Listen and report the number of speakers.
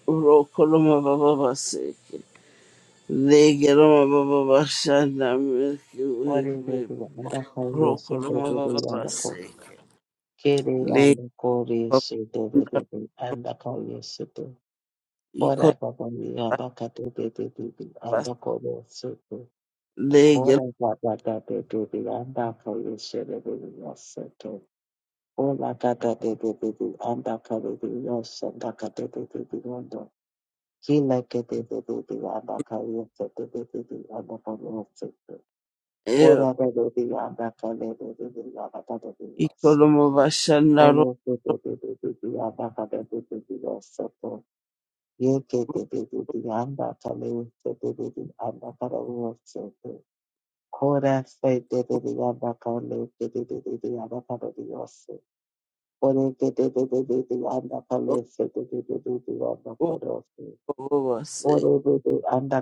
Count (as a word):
two